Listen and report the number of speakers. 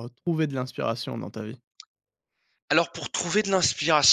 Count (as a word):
two